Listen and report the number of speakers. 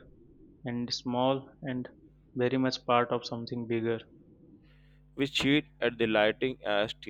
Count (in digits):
2